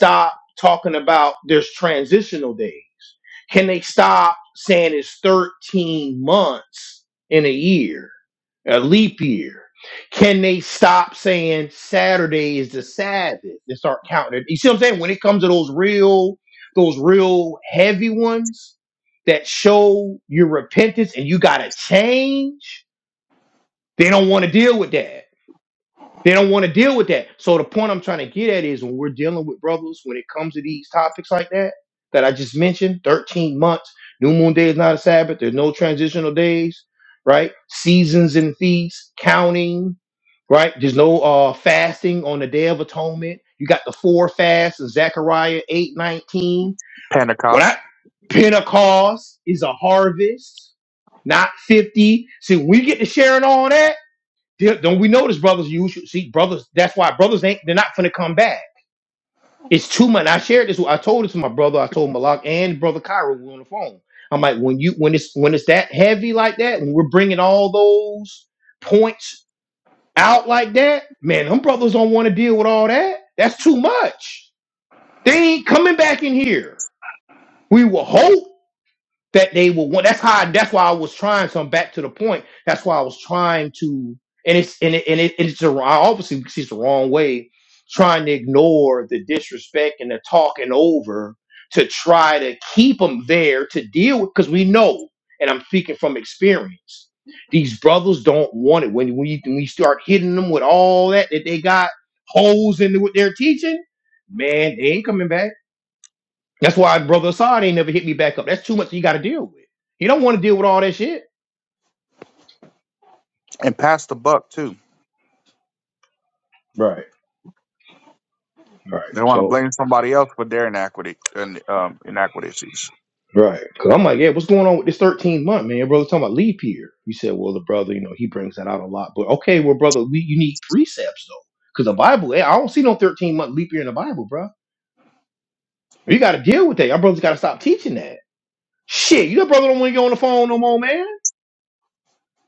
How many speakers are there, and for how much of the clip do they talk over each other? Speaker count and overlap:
2, under 1%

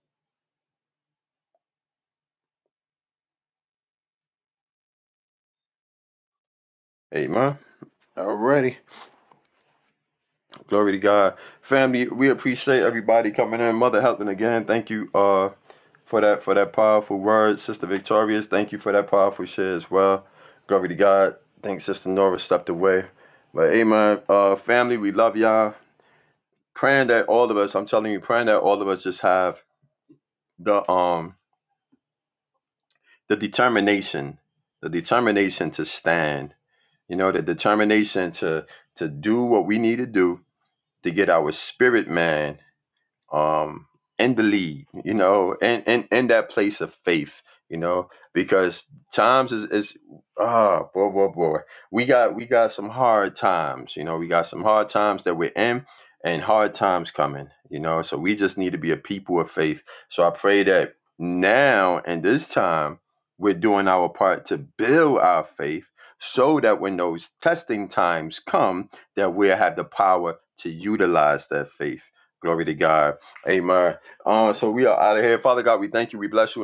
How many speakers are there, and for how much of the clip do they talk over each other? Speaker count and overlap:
1, no overlap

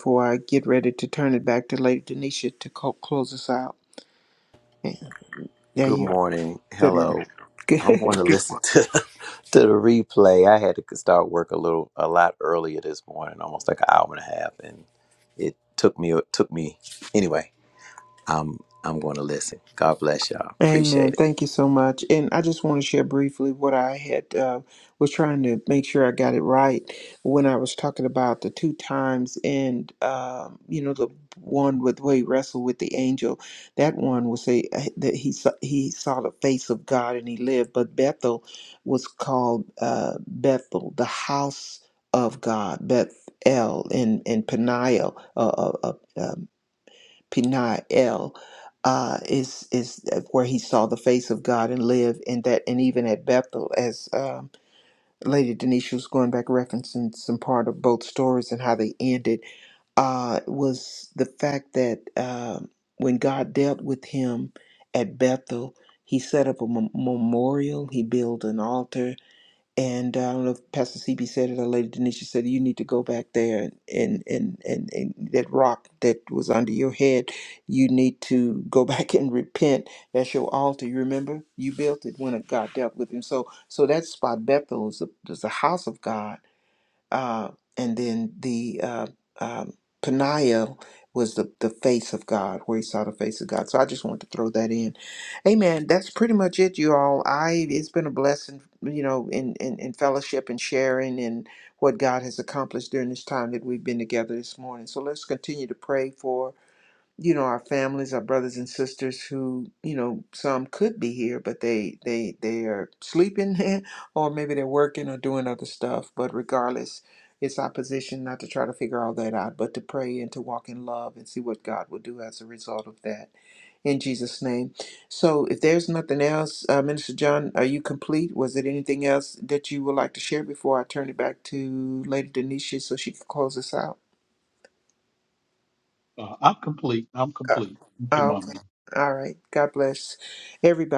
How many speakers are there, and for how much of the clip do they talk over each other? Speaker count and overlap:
3, about 2%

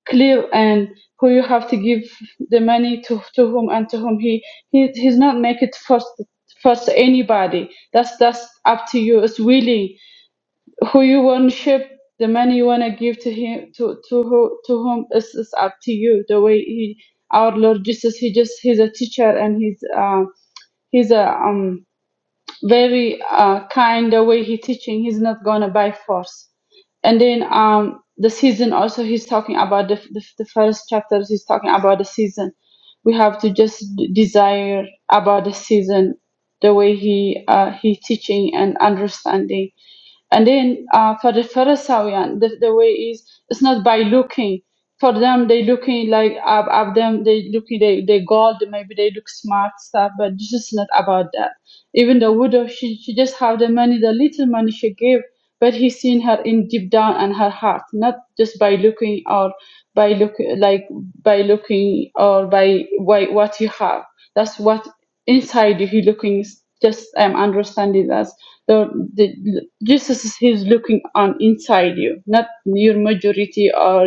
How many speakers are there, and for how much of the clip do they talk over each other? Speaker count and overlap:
1, no overlap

